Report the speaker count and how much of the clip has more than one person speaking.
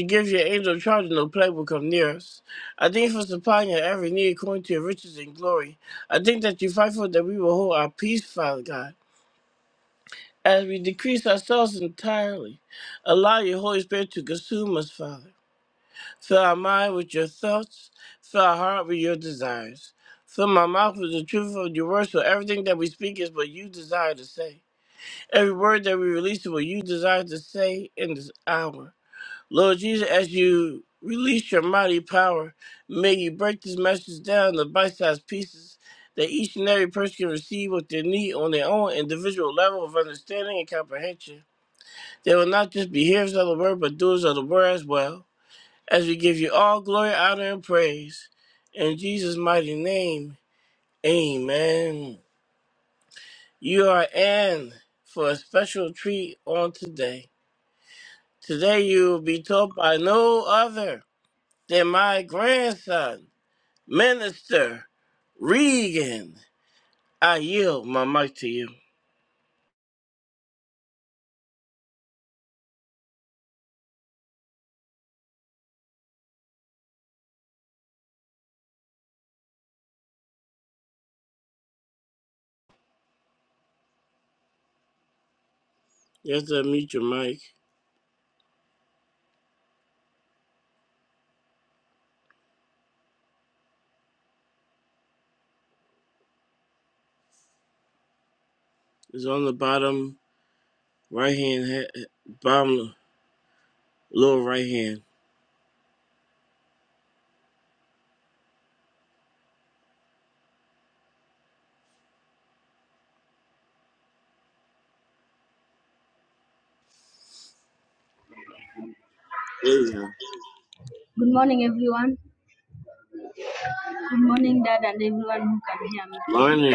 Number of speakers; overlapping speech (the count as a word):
two, under 1%